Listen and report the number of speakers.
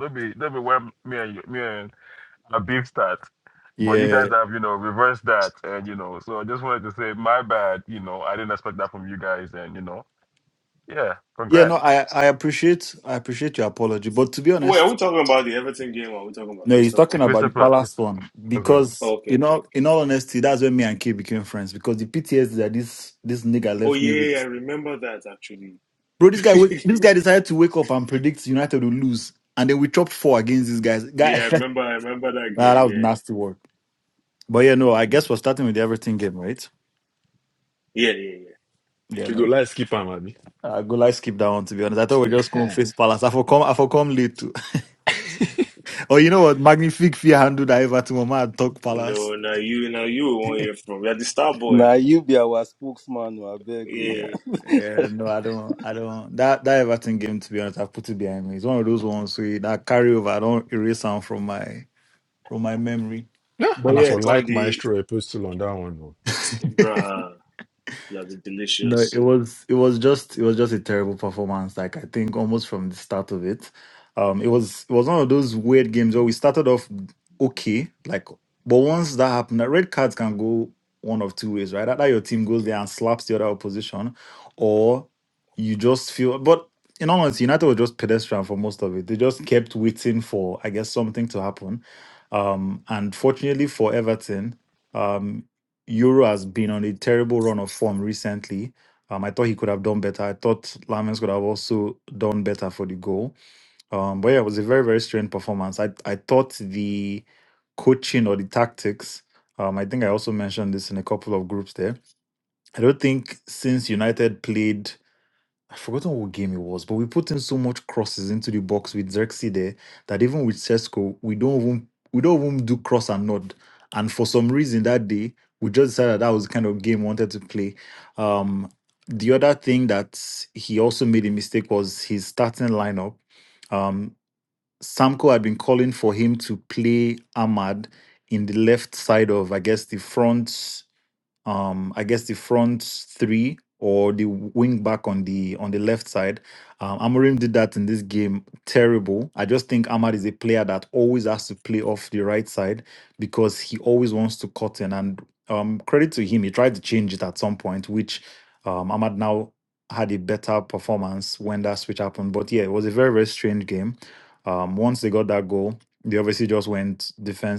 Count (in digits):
5